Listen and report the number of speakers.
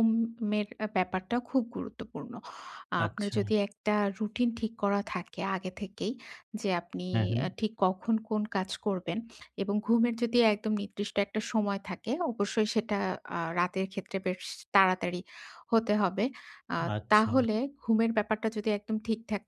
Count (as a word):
two